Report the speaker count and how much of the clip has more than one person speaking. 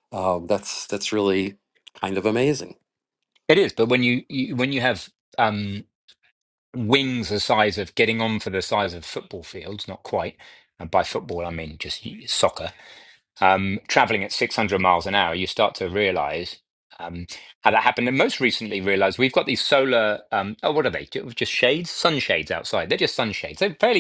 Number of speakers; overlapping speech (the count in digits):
2, no overlap